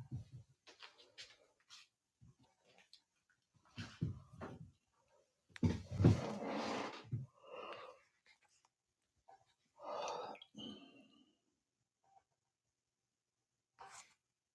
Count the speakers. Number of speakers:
0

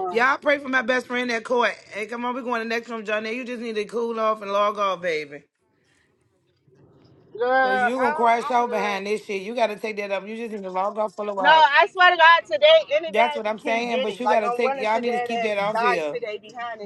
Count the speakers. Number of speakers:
2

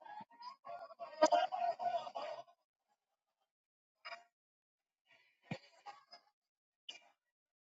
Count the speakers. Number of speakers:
0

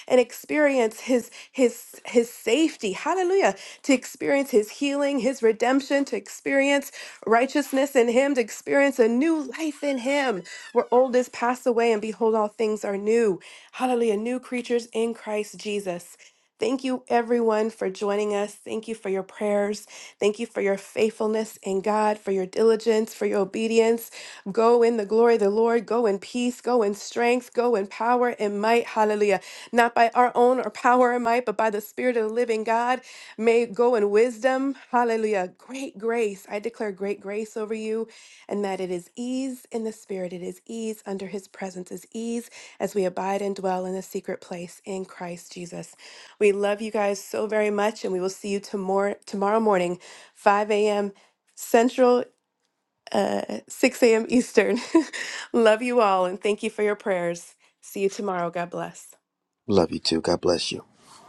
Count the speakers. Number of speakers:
2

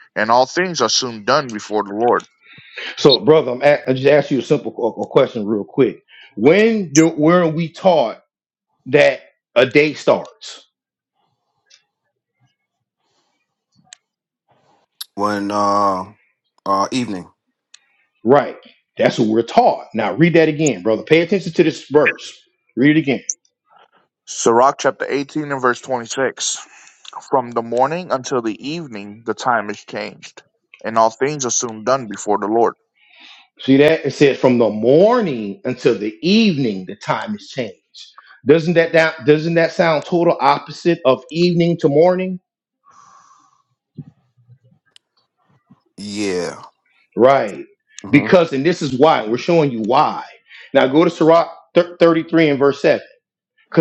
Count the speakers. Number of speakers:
3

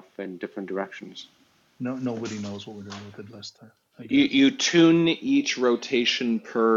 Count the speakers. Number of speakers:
3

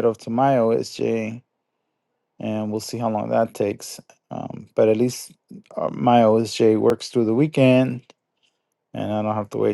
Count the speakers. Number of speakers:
1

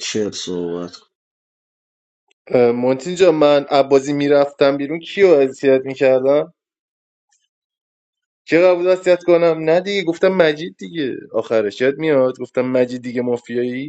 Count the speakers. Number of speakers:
2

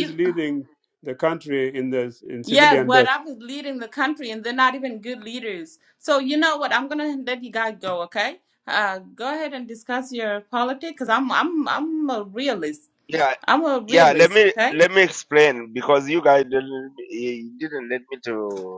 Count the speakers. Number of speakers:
3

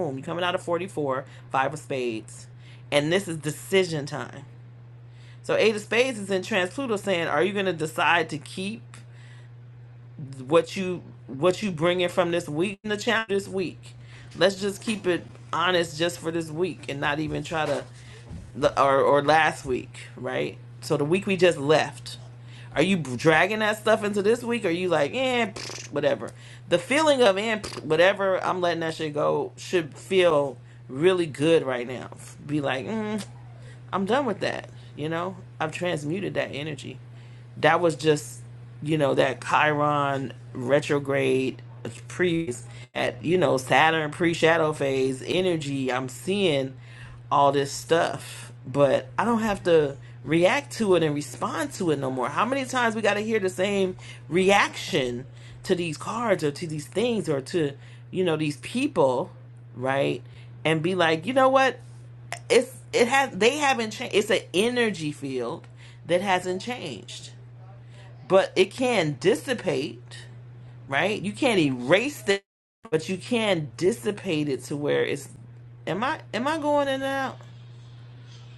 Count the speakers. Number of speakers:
1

